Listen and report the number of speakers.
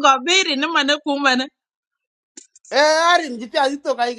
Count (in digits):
2